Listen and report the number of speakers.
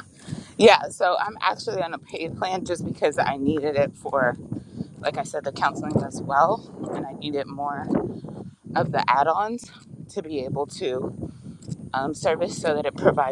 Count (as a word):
one